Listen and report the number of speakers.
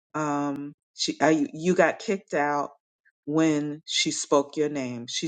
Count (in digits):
1